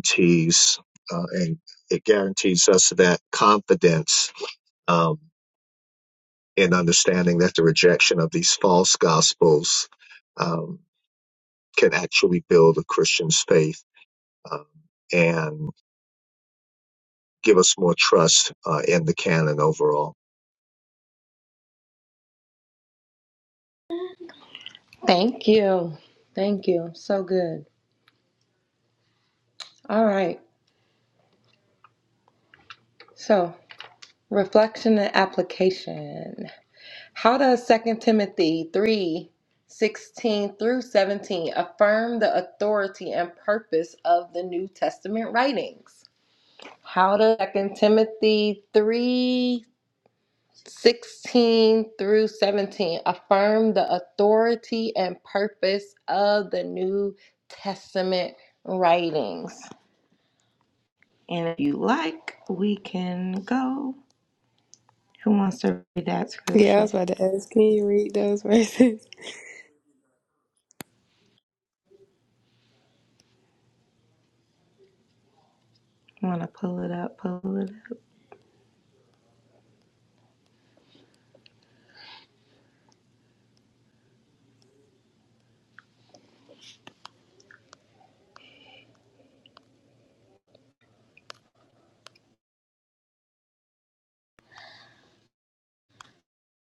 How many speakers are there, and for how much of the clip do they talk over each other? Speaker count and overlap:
3, under 1%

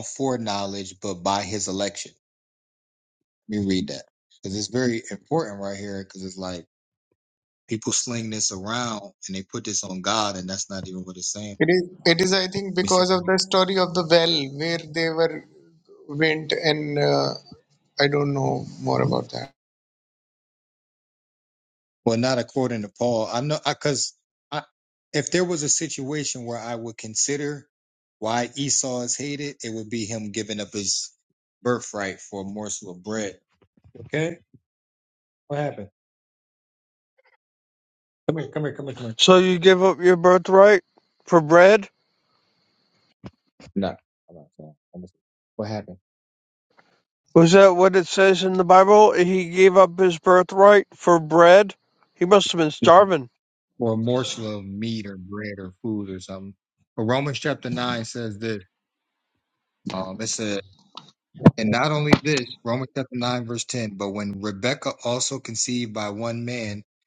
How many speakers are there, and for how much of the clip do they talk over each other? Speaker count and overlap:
3, under 1%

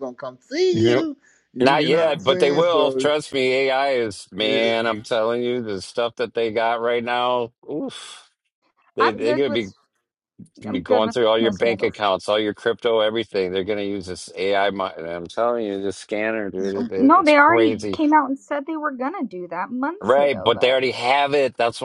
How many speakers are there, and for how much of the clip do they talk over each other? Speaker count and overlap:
3, about 27%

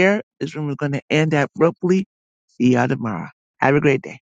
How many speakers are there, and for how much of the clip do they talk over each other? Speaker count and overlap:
1, no overlap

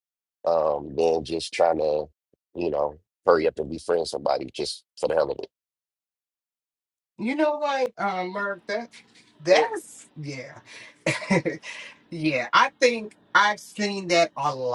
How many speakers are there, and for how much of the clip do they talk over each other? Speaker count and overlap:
2, no overlap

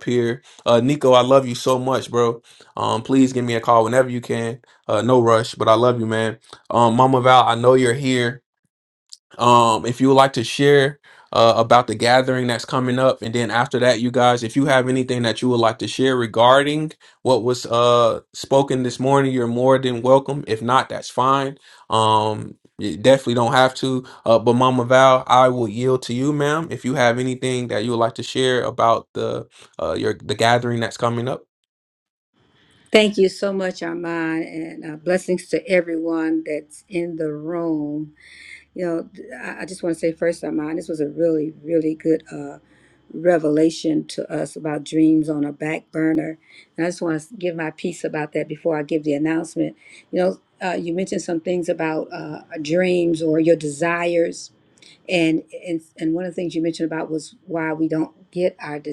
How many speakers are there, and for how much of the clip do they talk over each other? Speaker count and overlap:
2, no overlap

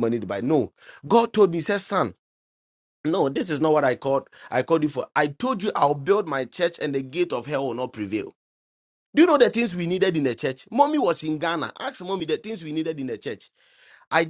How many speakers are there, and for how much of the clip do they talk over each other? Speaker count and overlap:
1, no overlap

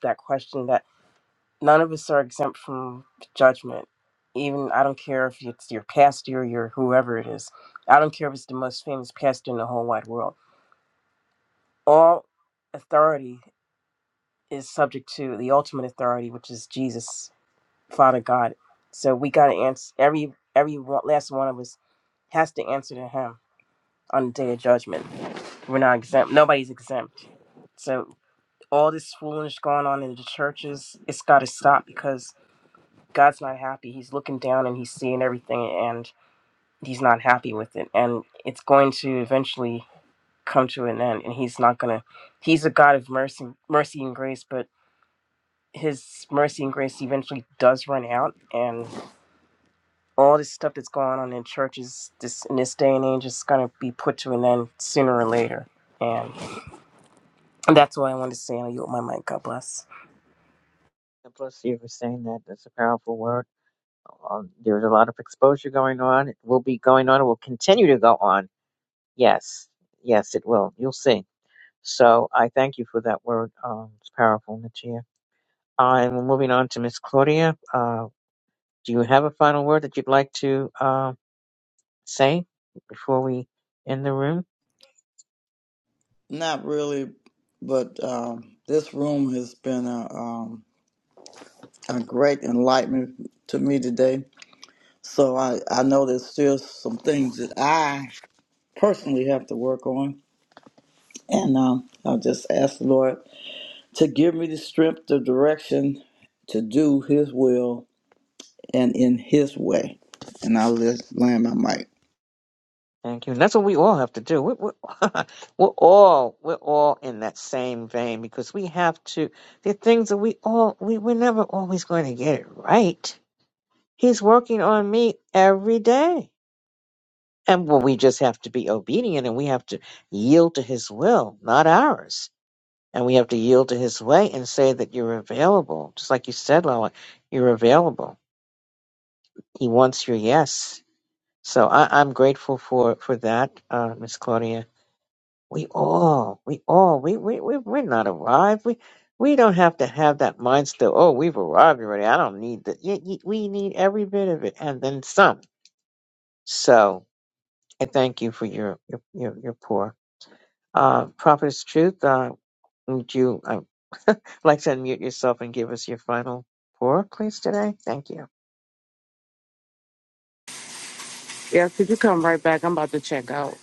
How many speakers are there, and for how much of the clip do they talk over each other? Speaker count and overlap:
4, no overlap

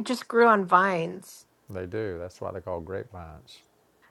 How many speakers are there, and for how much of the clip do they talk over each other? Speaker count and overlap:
2, no overlap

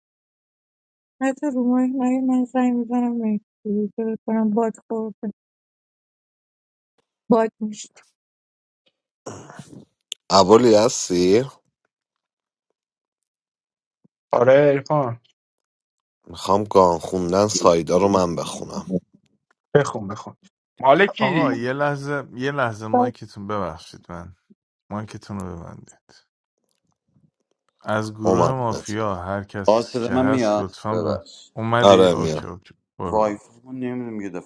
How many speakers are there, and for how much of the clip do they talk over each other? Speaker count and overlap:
5, about 10%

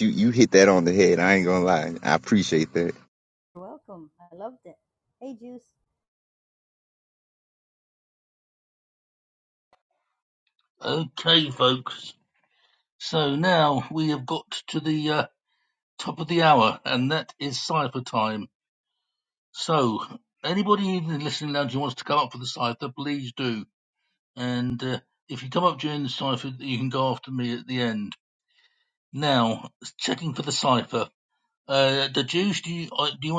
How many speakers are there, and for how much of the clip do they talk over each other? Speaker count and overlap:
3, no overlap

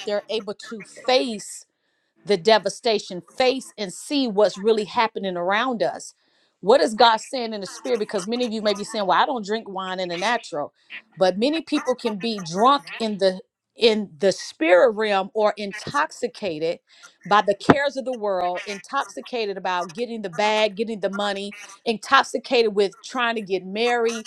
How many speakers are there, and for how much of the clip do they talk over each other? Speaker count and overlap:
1, no overlap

